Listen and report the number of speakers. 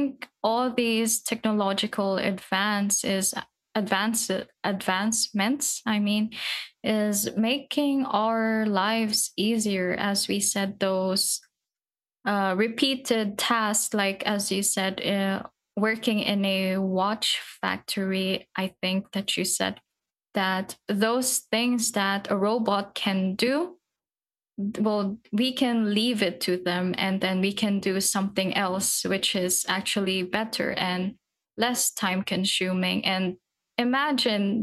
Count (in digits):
1